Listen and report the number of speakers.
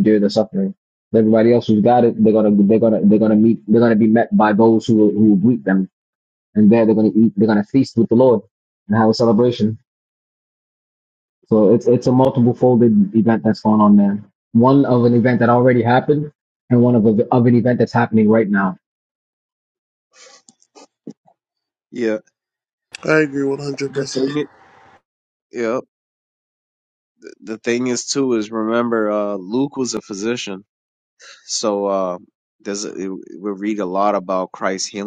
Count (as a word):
three